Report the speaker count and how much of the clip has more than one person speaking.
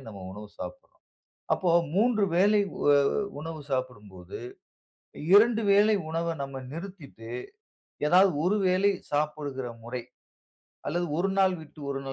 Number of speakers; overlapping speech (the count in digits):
1, no overlap